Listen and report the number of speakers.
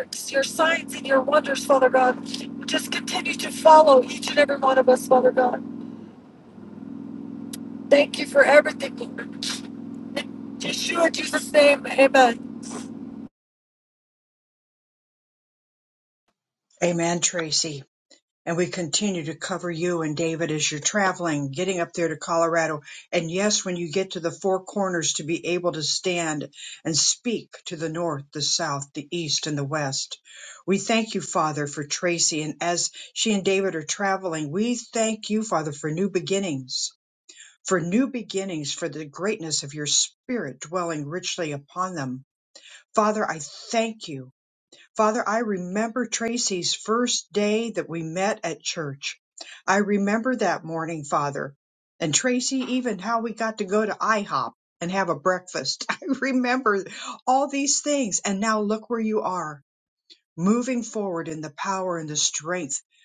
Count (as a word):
two